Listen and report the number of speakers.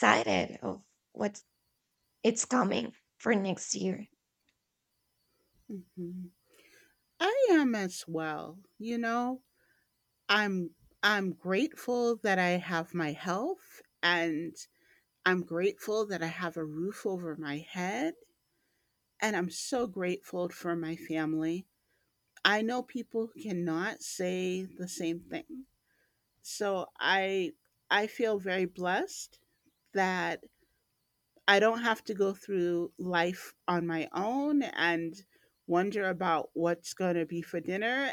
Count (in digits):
2